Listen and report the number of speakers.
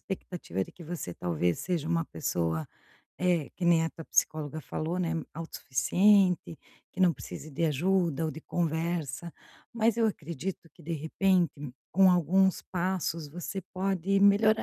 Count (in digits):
1